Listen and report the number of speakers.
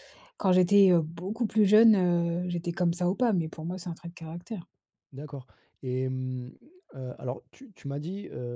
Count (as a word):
two